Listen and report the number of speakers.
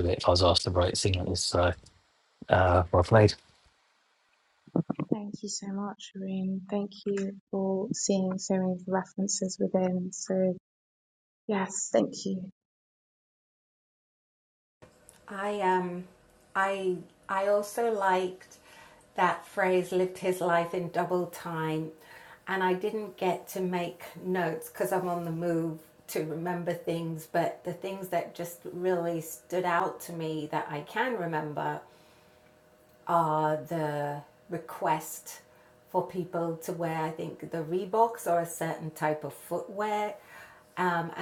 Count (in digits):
3